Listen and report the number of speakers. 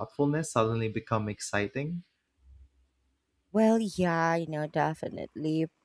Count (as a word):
two